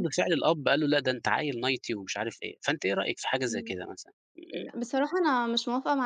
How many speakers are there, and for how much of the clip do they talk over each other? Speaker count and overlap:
2, about 5%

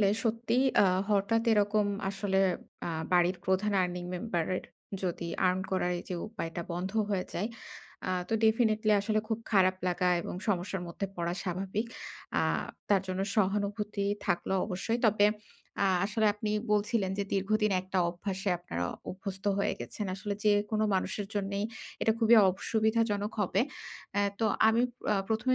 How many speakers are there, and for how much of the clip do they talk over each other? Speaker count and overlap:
1, no overlap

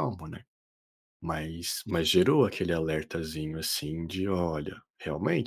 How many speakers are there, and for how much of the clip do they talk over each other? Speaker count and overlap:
1, no overlap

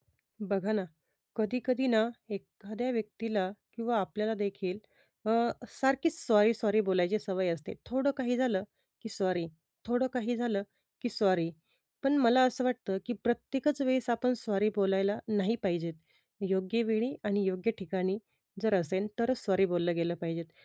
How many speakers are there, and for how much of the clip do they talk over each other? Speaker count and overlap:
1, no overlap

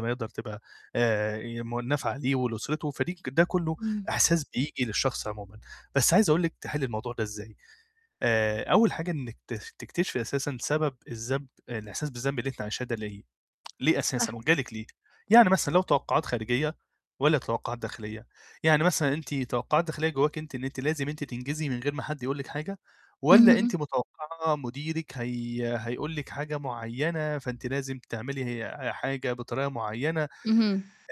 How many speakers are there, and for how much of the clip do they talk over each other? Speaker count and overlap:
2, about 3%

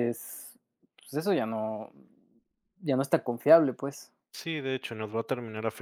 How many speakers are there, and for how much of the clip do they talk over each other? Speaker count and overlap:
2, no overlap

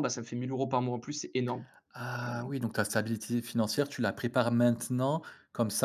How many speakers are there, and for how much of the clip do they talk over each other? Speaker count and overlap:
2, about 4%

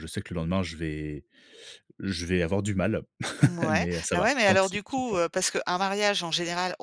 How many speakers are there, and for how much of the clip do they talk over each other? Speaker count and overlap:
2, about 22%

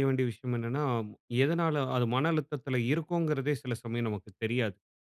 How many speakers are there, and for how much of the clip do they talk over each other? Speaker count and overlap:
1, no overlap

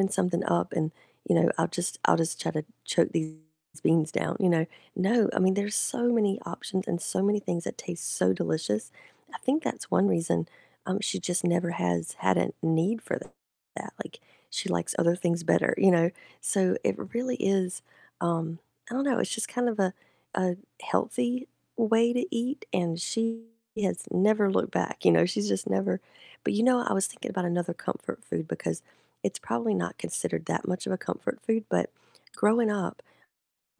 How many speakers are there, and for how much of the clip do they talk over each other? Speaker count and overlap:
1, no overlap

